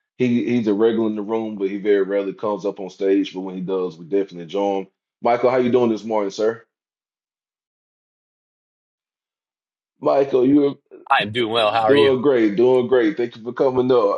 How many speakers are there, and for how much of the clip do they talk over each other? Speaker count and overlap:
2, about 2%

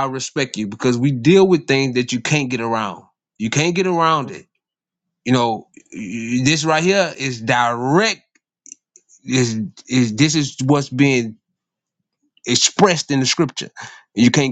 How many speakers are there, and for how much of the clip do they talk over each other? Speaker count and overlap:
1, no overlap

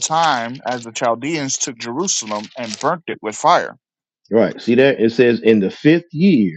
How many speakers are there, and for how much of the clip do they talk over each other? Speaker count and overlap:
2, no overlap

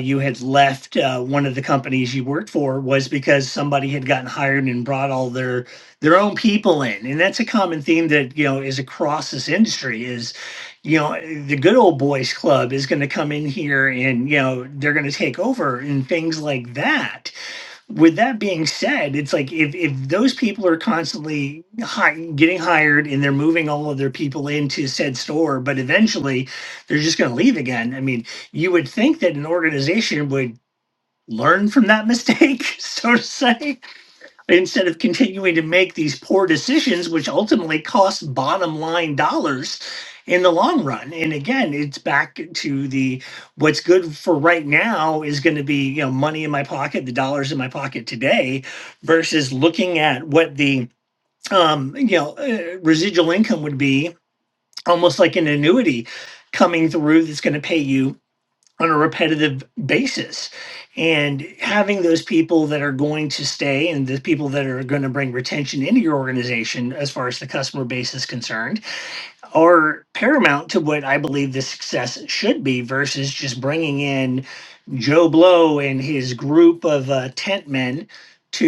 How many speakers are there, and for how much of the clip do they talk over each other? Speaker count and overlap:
1, no overlap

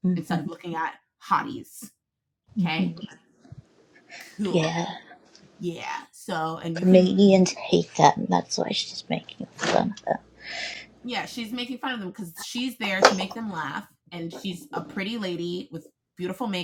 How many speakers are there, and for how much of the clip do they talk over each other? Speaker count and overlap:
2, about 7%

